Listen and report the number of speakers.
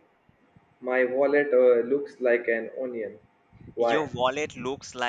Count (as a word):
two